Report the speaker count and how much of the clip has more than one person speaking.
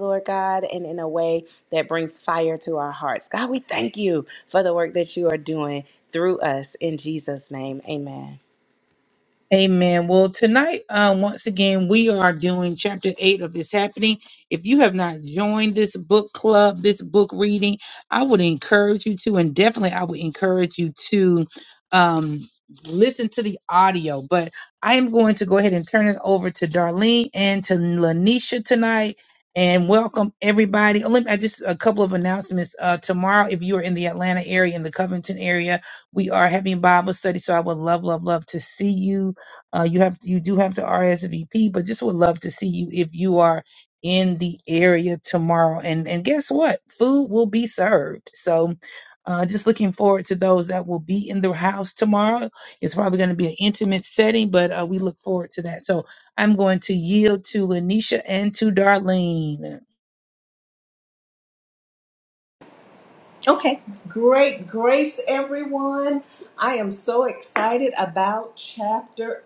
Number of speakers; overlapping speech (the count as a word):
three, no overlap